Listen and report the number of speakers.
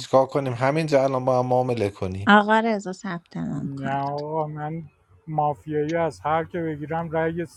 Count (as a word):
three